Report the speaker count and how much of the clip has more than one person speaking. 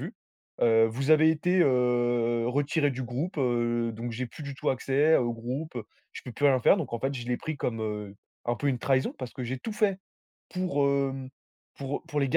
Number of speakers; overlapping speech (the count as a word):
one, no overlap